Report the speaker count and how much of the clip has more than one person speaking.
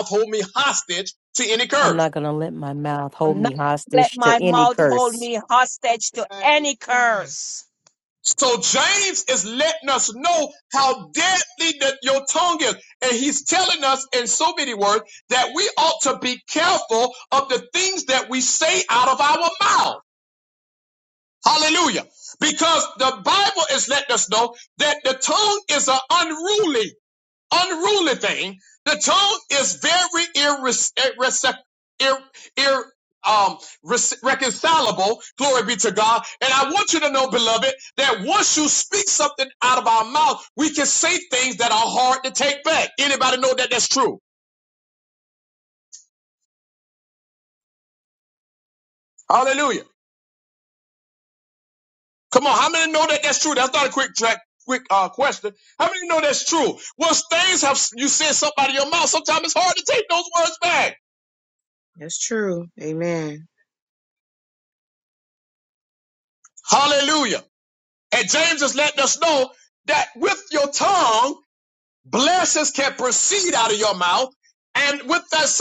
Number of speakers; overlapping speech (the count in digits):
4, about 2%